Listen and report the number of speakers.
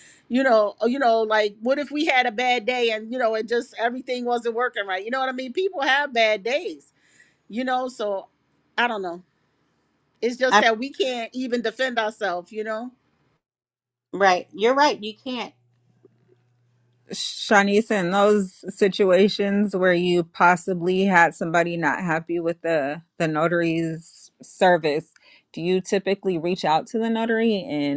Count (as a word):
three